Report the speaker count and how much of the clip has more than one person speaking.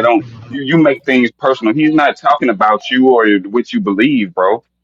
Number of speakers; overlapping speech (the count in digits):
1, no overlap